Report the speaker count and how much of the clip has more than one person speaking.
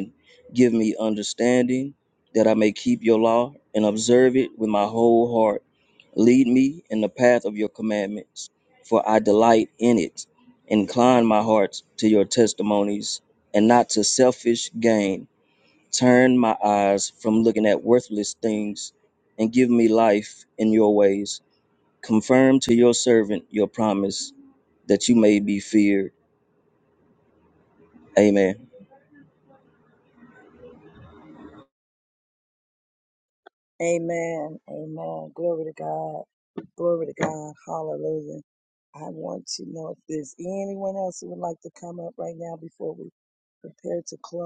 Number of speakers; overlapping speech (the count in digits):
2, no overlap